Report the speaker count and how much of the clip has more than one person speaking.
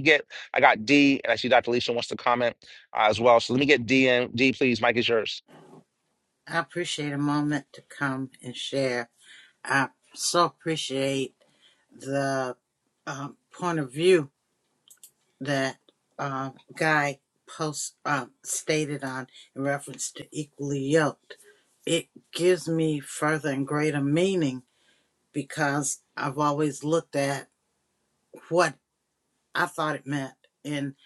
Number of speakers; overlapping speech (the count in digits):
2, no overlap